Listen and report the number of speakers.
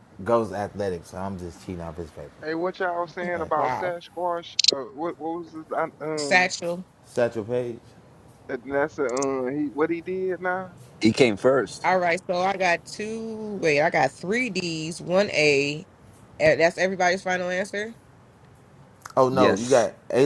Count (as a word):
four